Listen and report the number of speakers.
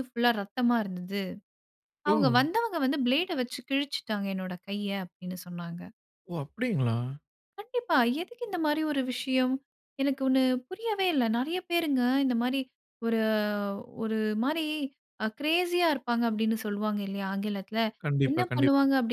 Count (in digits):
2